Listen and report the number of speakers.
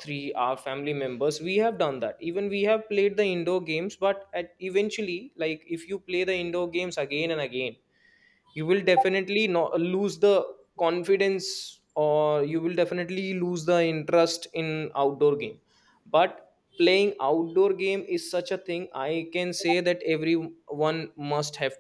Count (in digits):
1